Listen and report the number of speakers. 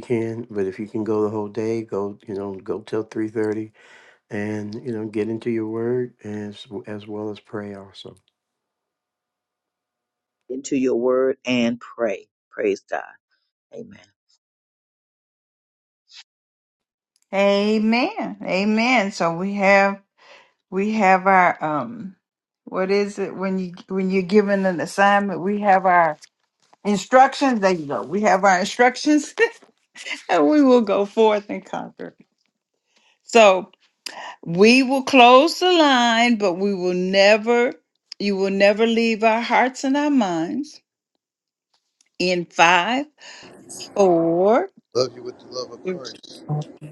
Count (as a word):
four